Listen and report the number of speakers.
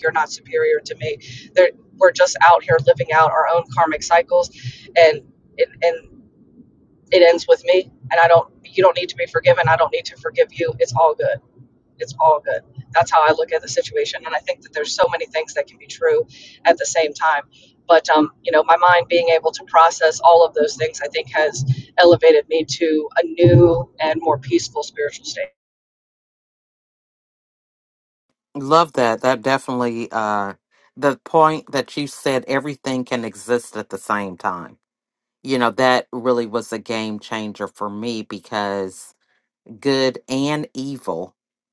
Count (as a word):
two